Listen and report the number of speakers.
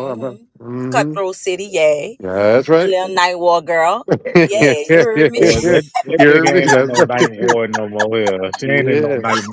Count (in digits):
3